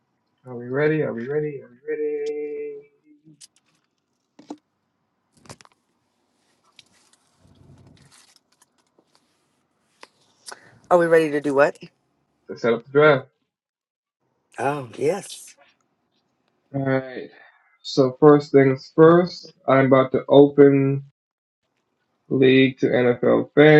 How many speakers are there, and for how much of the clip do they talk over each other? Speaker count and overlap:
two, no overlap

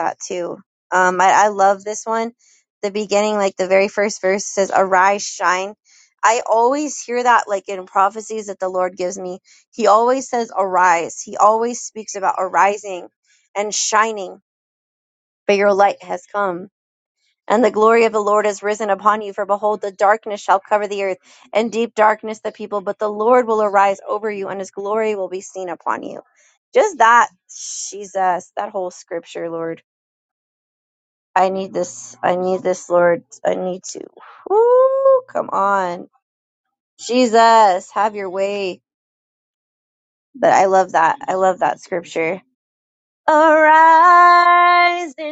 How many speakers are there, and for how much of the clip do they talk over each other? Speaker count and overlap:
one, no overlap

